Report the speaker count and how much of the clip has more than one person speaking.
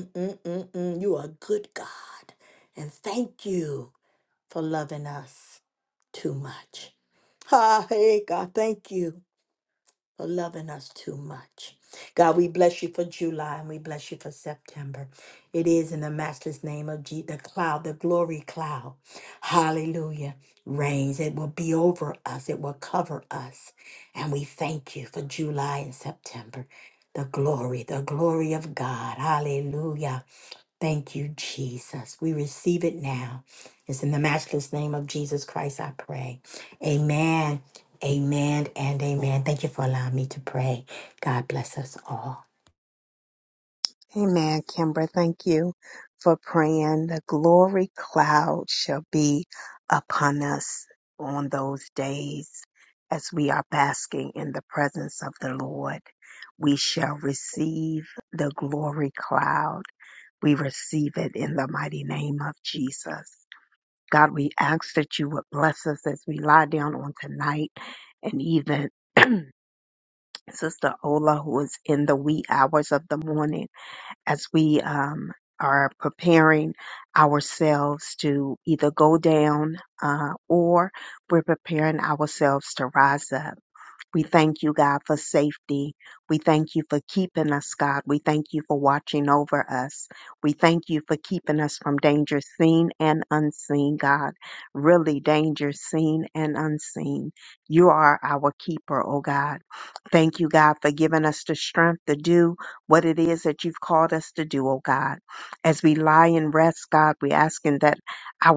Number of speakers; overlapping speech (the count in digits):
2, no overlap